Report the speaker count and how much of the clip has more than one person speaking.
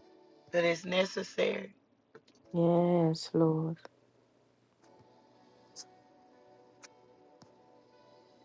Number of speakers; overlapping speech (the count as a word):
two, no overlap